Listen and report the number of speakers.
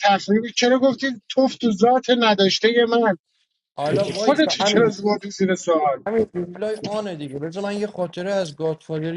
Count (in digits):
2